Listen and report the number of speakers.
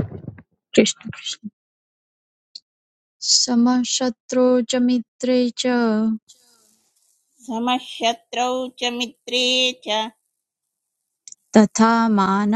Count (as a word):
two